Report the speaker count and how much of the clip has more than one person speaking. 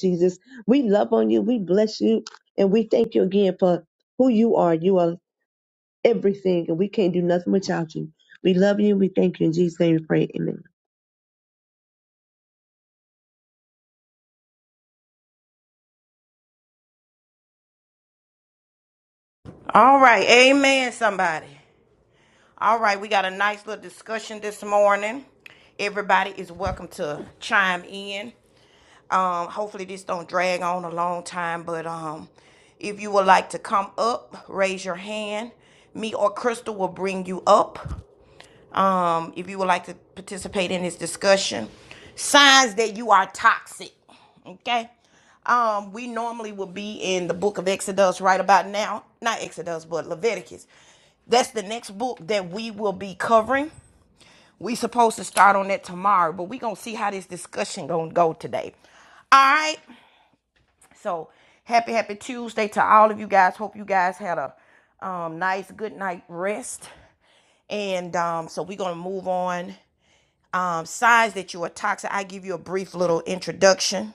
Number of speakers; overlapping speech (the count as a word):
two, no overlap